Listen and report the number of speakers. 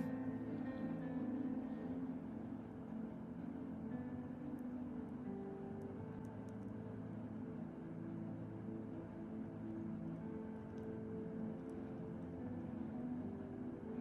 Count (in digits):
0